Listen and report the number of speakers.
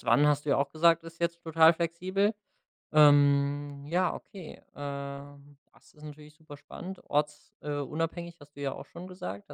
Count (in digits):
1